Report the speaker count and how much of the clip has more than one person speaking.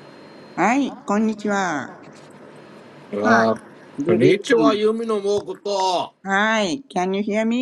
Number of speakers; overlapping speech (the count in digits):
2, about 15%